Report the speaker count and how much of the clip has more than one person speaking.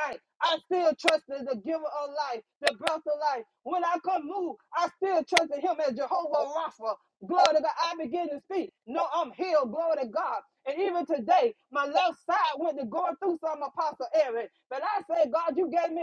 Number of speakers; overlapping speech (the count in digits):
1, no overlap